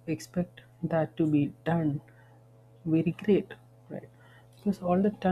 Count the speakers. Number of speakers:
one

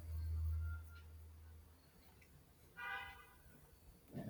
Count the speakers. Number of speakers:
zero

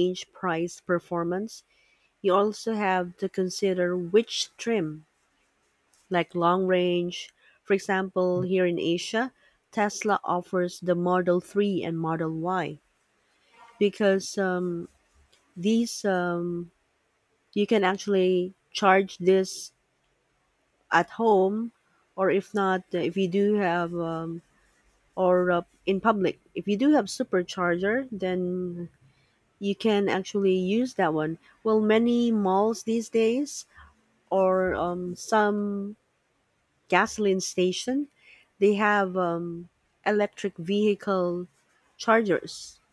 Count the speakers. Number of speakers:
one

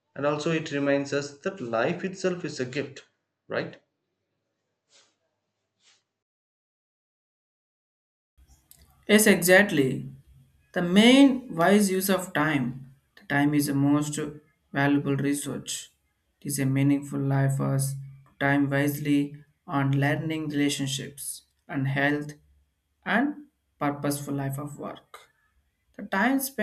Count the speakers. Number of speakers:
two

